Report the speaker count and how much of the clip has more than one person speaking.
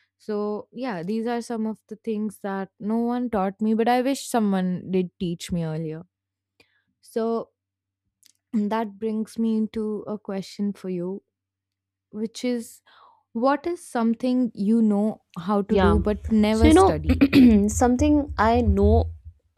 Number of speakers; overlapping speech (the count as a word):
two, about 5%